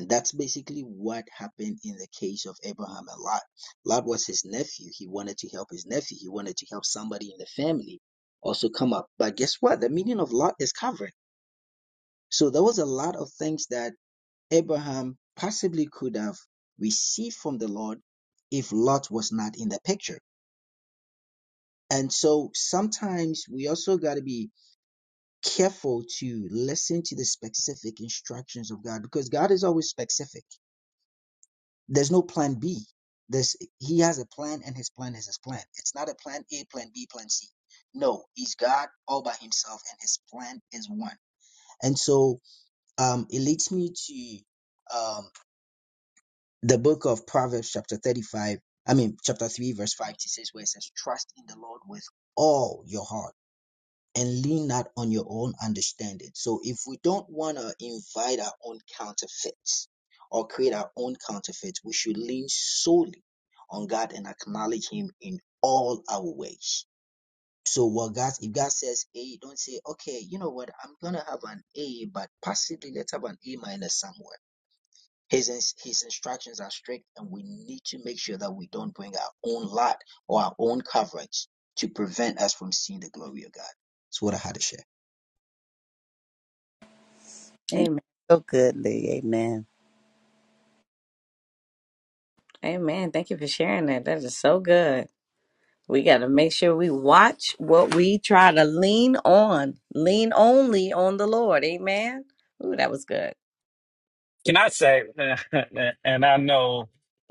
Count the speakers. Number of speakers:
4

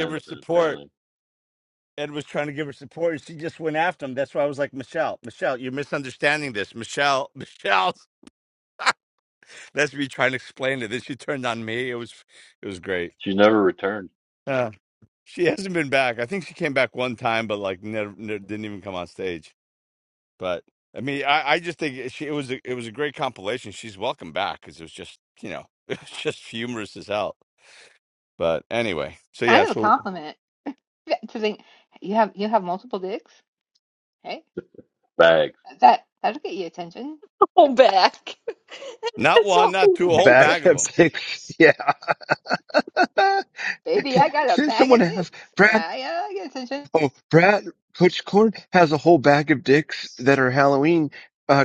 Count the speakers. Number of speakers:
5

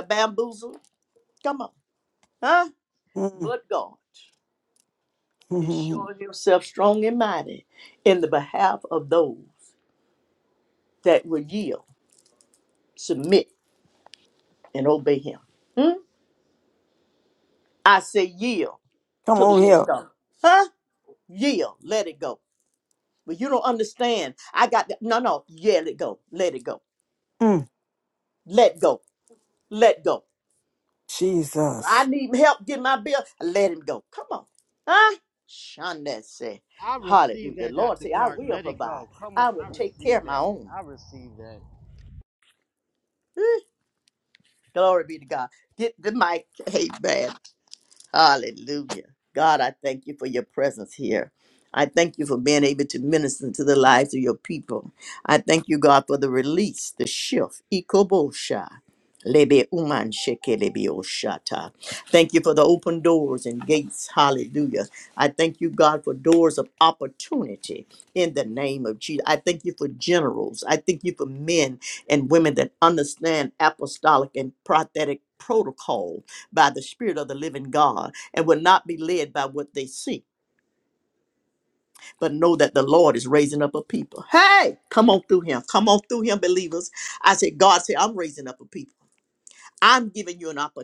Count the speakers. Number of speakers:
3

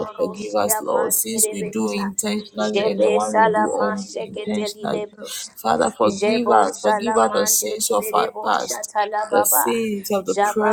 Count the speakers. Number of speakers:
2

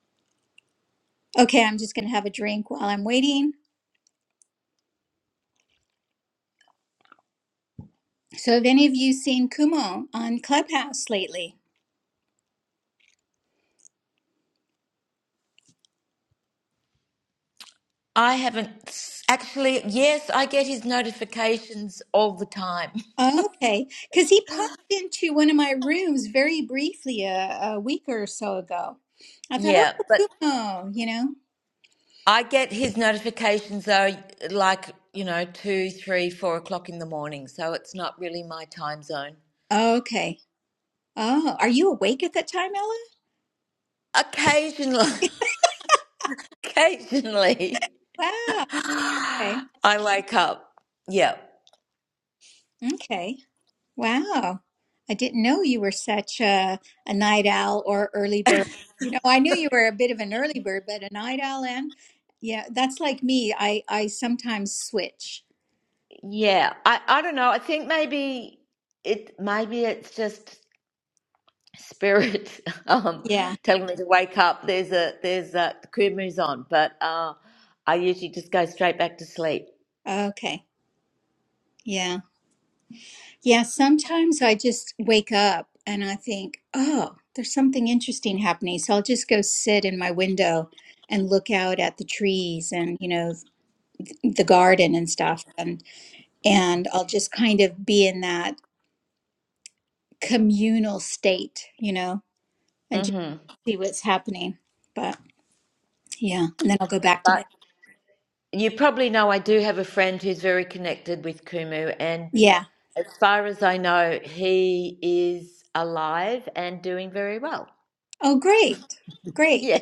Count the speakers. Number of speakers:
2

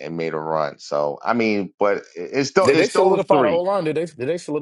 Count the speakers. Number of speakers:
2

